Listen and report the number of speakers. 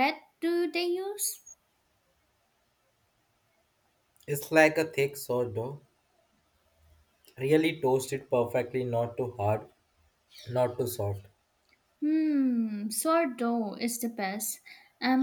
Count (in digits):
2